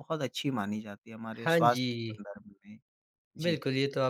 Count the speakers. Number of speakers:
2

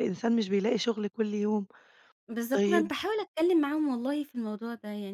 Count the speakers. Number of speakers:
2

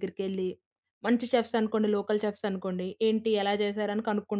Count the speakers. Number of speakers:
1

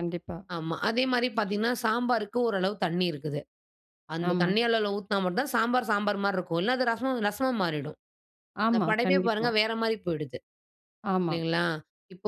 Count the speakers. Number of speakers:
2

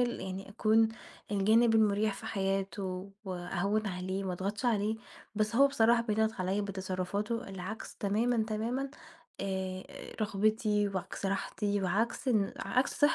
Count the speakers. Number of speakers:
1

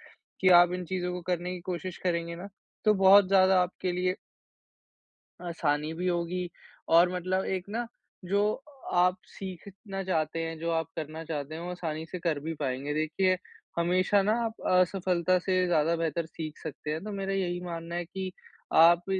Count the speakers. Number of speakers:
1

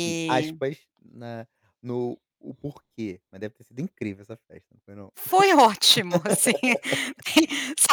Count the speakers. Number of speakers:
2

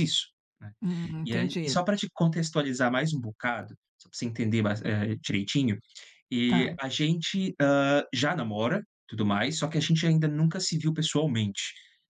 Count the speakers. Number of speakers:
2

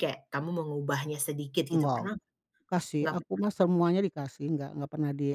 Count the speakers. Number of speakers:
2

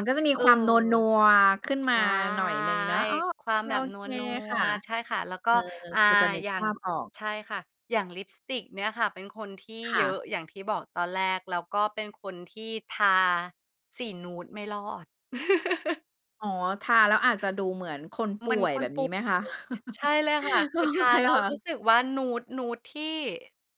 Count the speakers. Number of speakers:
2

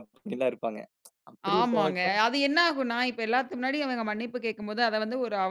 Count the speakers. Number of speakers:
2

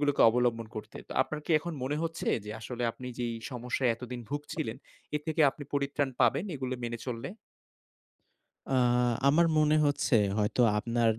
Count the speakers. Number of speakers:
2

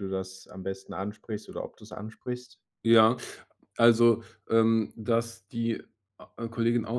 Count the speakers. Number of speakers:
2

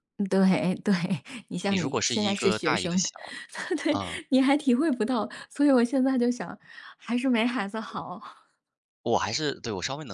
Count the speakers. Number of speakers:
2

